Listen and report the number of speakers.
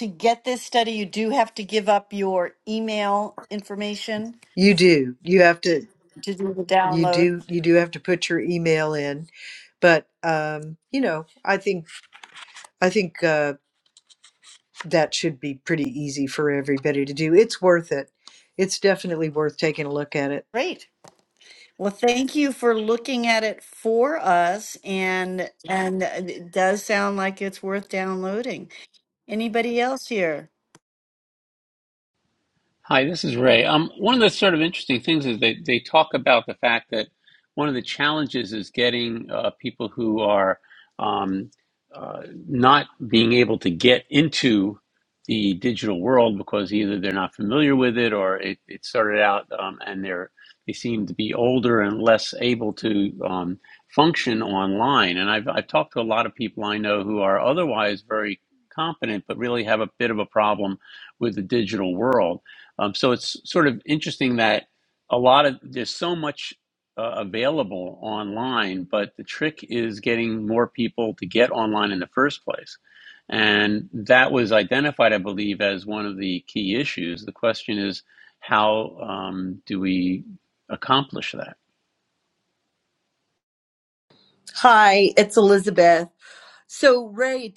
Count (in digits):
4